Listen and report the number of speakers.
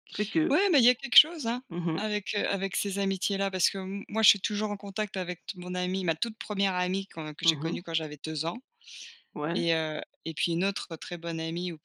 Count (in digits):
2